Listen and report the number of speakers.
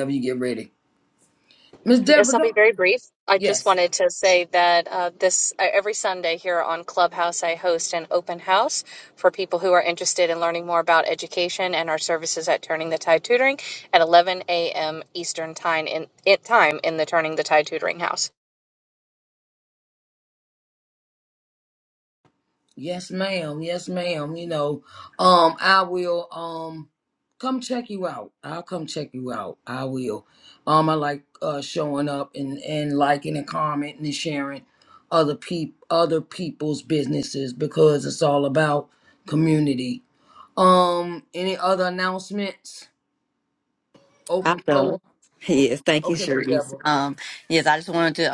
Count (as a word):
three